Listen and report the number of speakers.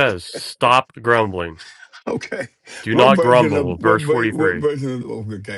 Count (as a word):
two